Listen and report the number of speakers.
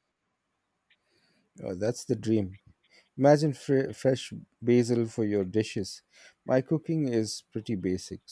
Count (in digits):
1